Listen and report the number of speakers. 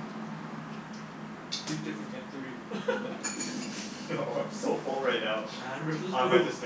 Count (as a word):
two